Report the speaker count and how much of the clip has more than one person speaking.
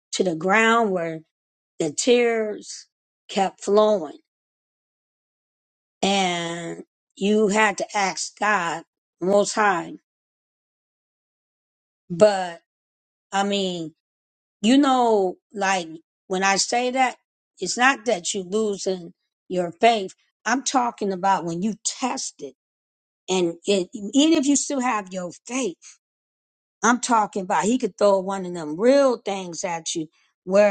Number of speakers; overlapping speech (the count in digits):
1, no overlap